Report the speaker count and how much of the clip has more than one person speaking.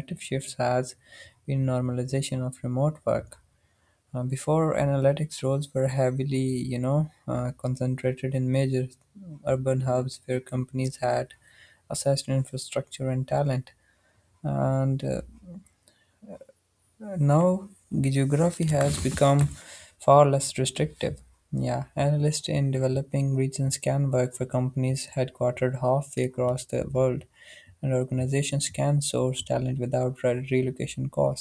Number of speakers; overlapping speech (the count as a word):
one, no overlap